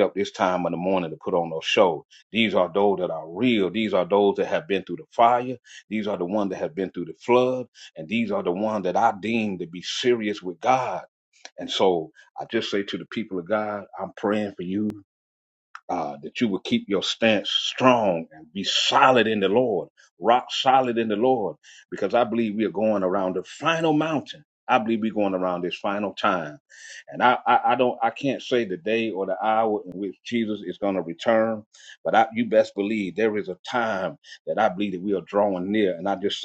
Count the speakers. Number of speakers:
1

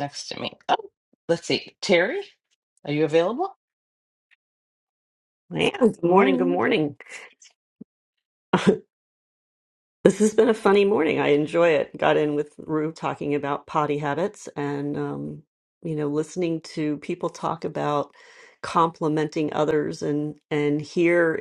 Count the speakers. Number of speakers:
2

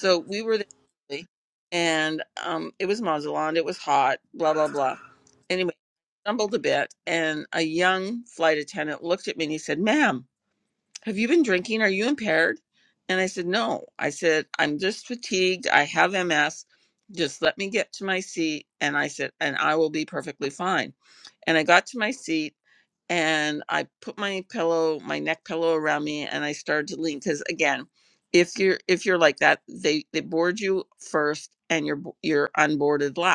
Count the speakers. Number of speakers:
1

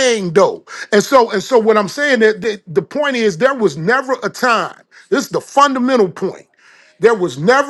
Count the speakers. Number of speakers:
1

